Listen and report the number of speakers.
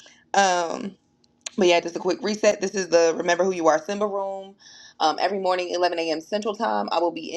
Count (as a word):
one